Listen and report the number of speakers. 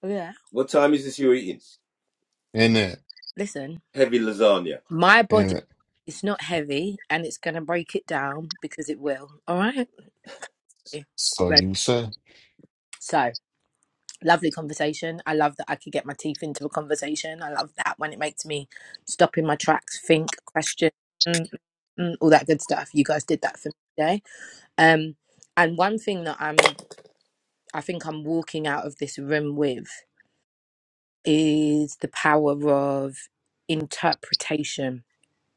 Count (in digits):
3